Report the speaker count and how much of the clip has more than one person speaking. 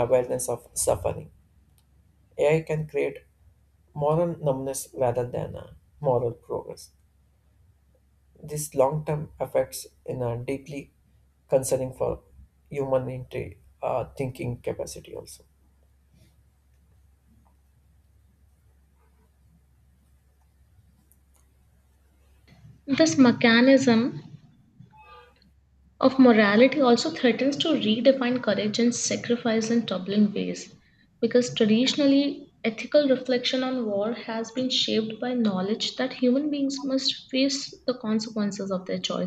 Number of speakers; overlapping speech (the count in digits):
2, no overlap